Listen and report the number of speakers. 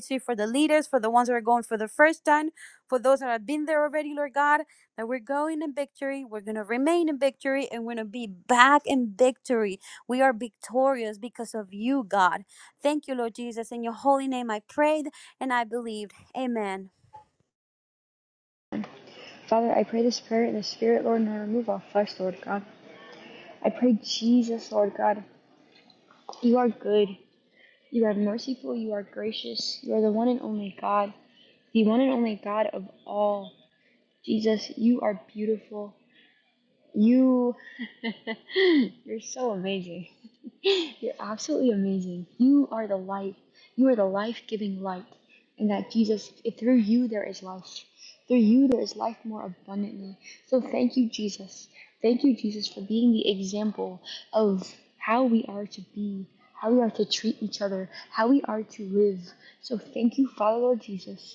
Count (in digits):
2